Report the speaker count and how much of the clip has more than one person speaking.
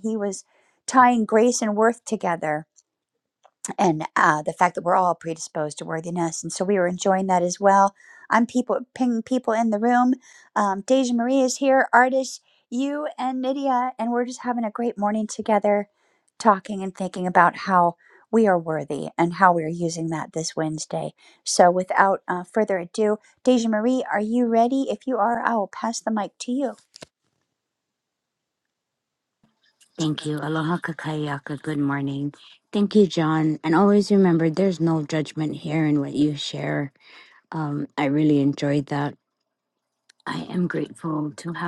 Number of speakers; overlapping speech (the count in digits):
2, no overlap